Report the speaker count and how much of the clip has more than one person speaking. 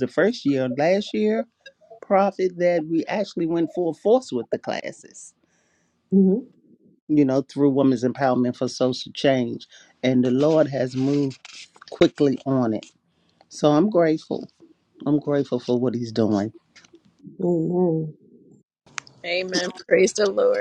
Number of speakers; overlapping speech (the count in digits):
3, no overlap